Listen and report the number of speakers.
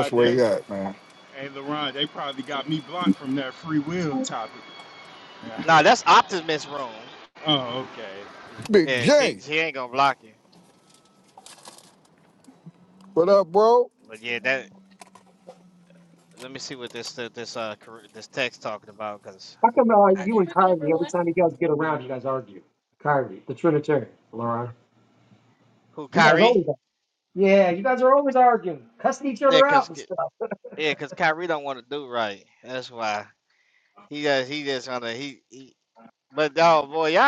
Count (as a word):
four